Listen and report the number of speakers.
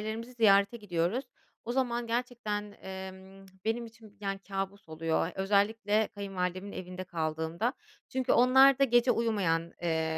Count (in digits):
1